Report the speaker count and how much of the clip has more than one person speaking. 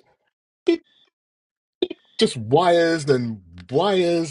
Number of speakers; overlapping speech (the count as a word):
one, no overlap